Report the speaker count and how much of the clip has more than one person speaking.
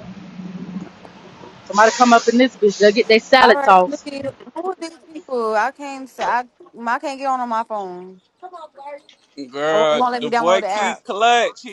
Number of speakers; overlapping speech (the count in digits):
3, about 15%